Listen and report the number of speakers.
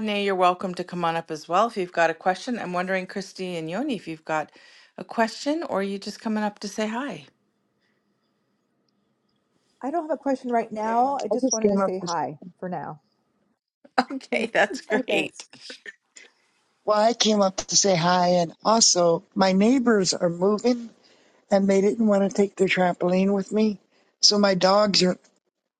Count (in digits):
3